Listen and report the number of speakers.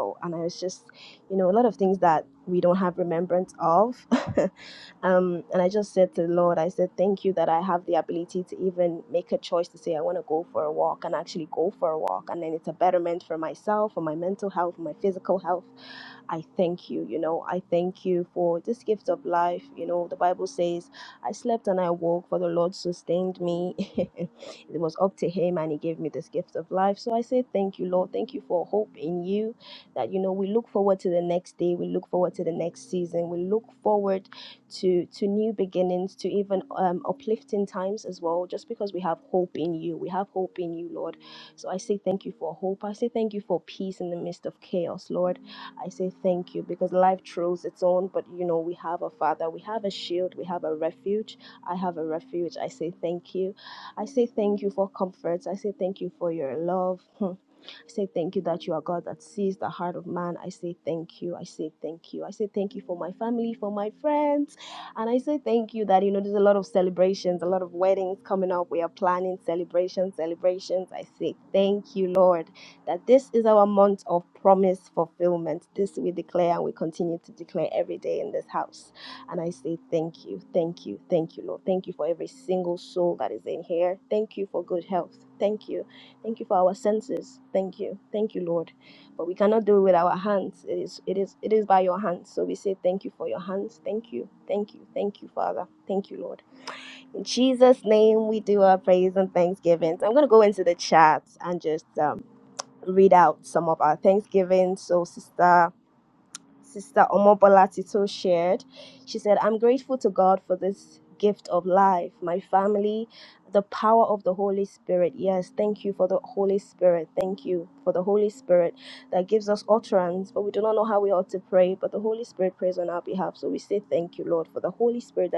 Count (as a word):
one